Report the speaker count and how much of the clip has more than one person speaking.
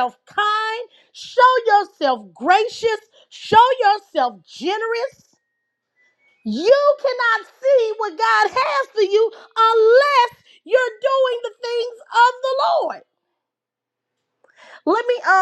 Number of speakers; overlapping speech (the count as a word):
one, no overlap